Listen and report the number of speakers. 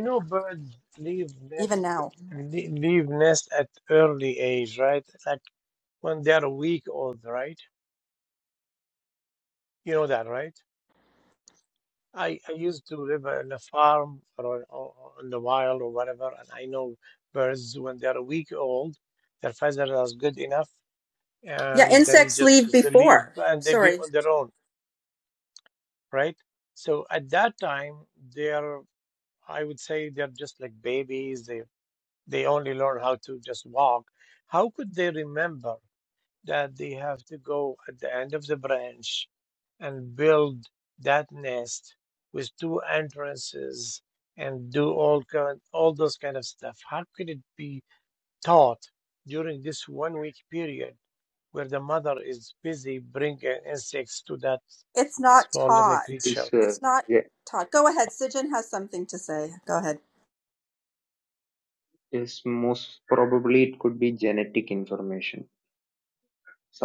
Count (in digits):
3